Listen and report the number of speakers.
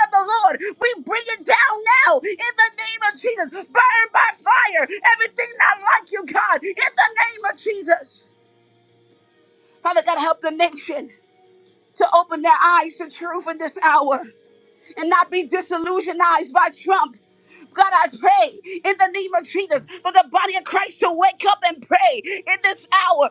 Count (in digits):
1